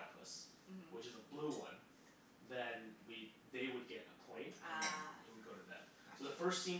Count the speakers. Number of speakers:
2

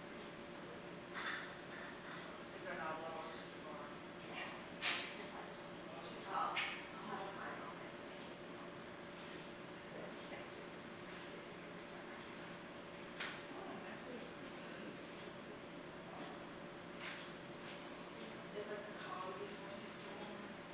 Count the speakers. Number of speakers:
2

